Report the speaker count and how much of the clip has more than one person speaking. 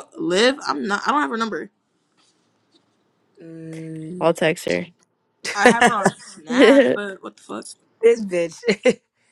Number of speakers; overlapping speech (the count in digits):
3, about 6%